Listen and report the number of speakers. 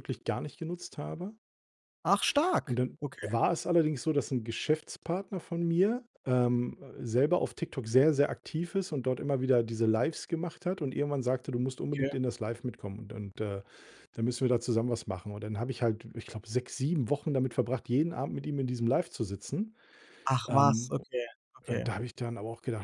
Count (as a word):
two